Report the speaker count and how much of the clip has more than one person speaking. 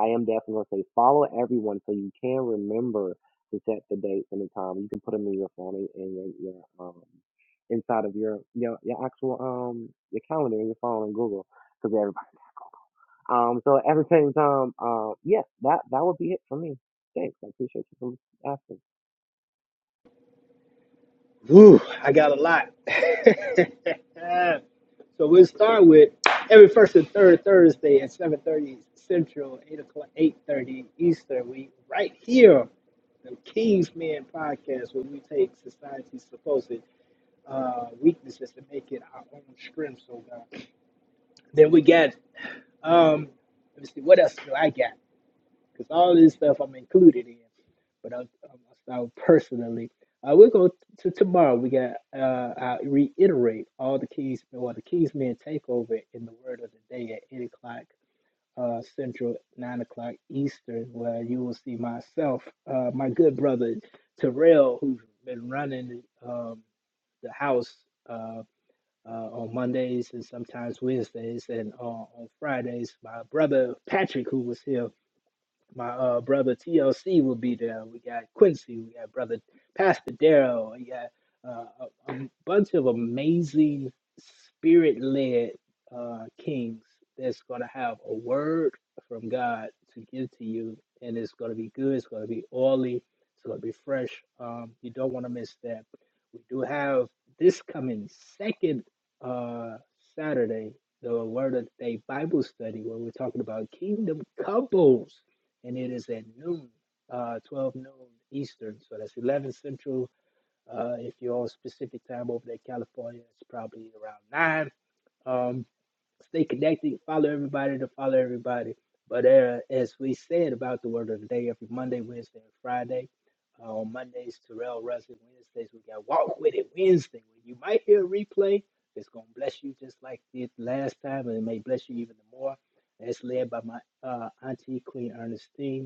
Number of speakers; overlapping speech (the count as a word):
two, no overlap